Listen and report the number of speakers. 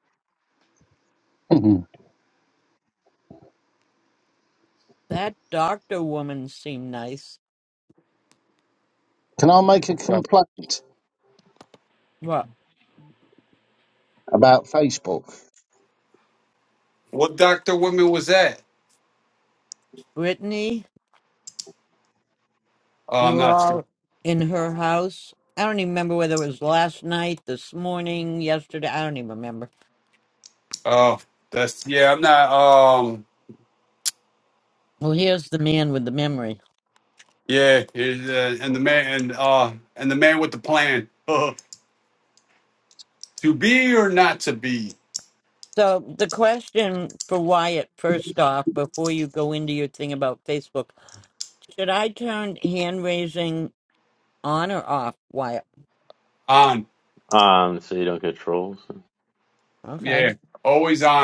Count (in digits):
4